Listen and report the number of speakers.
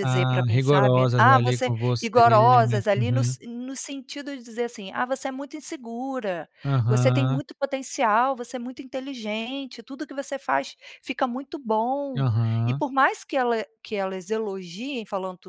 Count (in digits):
2